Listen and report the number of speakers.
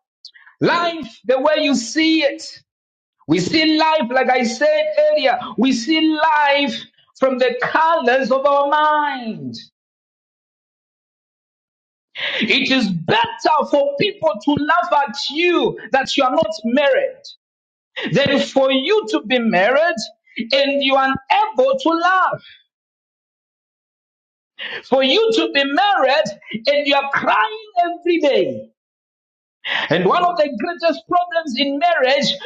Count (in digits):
1